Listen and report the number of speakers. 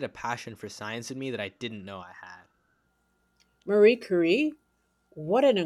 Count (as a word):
two